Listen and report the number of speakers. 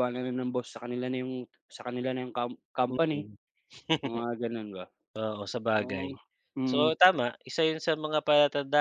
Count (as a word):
two